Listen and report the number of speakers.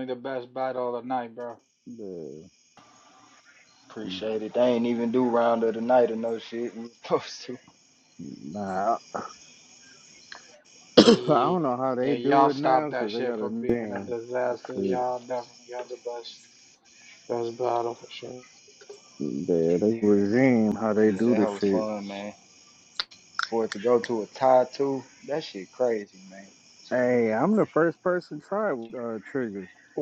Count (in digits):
3